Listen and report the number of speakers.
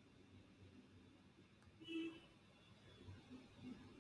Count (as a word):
zero